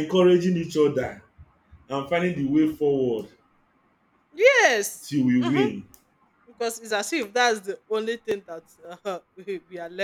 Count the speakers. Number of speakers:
2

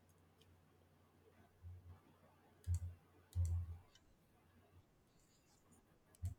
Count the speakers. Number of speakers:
0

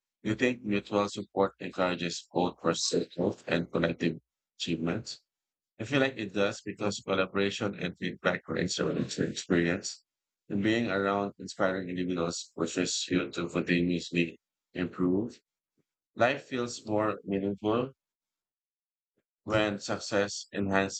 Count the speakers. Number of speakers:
1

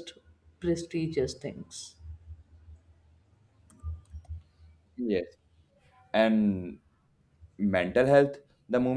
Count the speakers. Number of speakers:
2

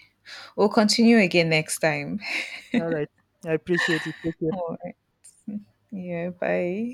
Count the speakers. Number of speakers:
2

